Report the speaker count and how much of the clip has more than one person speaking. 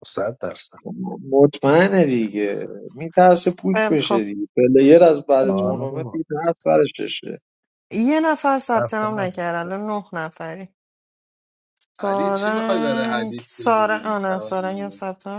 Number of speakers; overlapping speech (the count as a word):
four, about 27%